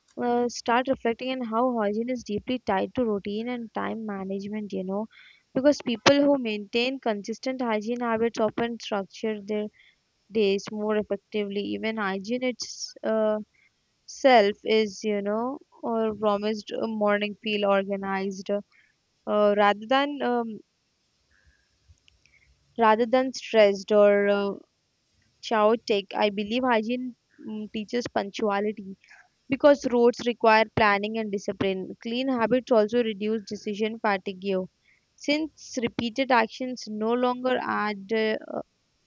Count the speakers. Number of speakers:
1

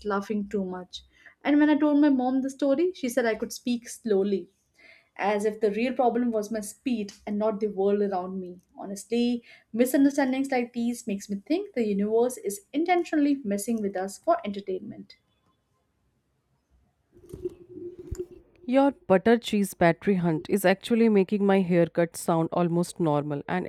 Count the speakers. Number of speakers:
2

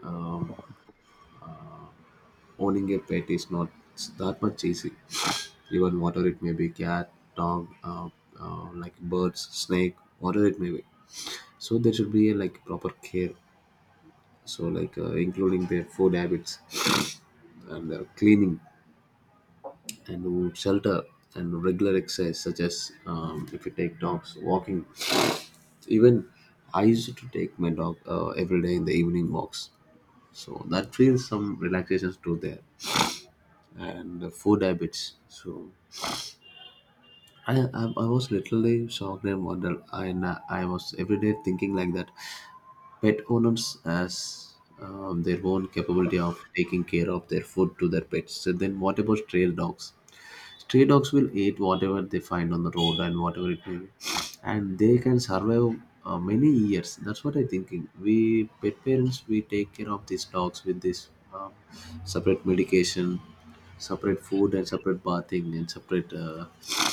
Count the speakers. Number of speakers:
1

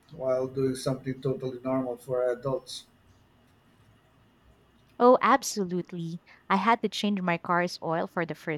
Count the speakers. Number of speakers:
2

